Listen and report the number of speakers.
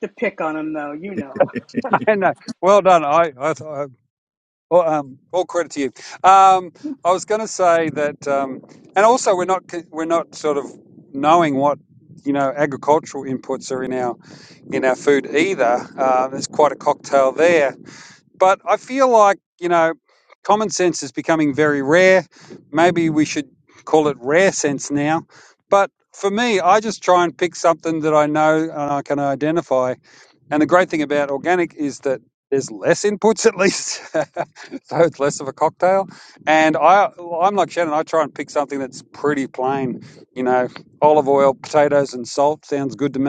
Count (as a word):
two